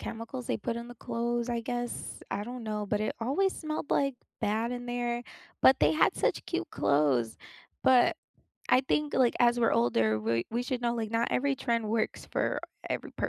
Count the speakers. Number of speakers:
one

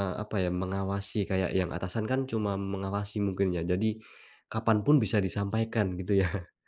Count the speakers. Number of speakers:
one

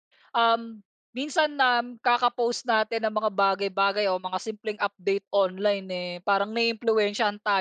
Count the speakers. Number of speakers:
one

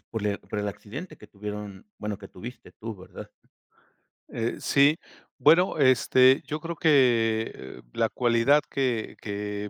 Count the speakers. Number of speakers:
two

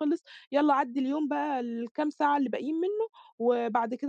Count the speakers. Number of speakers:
one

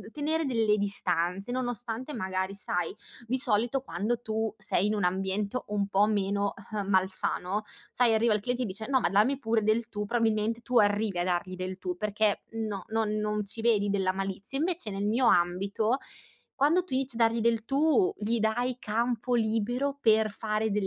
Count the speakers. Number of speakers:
one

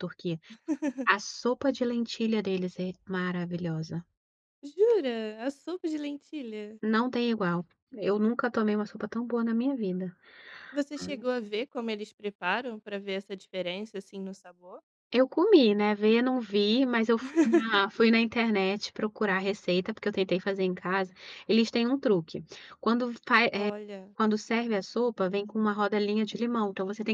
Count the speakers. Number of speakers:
two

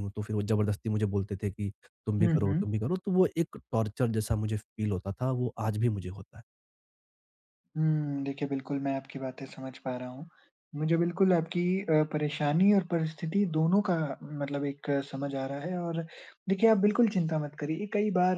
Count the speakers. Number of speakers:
two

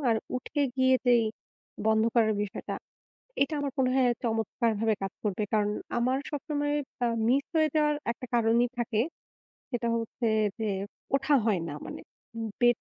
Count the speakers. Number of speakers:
one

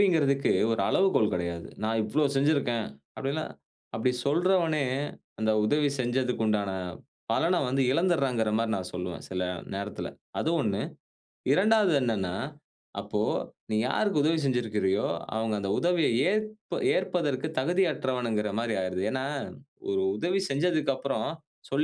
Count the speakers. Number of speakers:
one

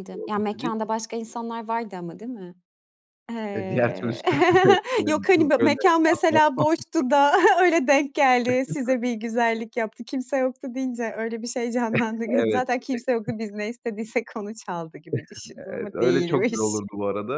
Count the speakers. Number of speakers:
two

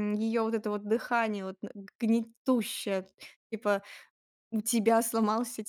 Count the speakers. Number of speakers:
one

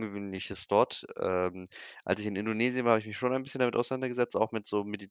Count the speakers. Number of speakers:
one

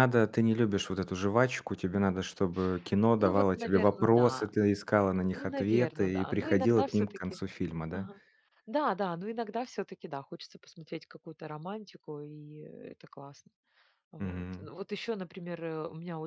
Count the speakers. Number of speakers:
two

